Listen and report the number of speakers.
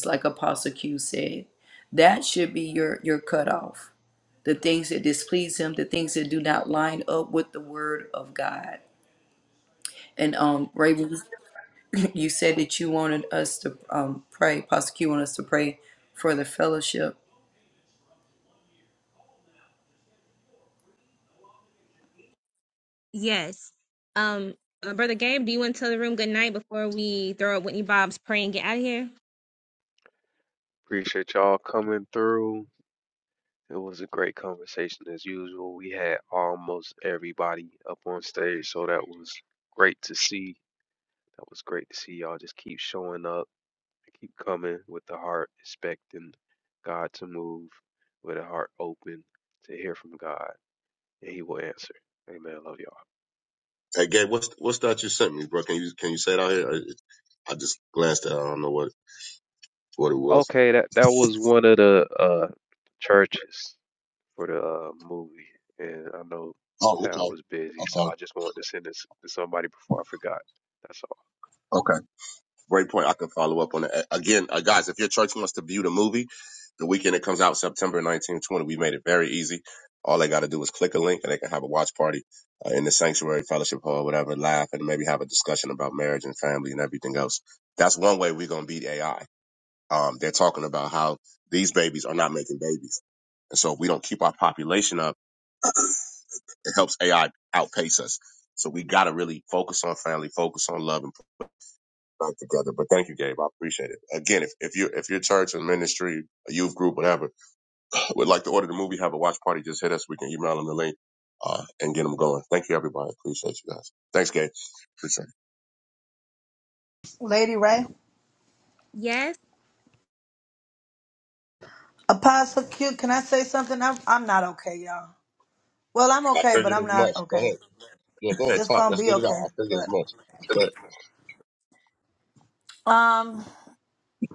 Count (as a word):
five